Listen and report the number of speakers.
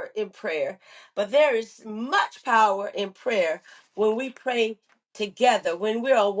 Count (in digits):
1